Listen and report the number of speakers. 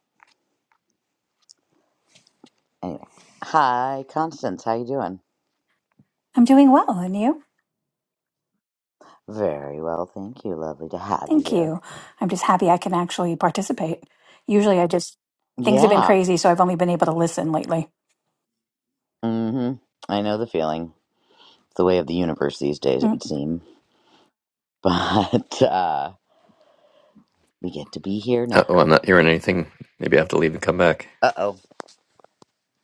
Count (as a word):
three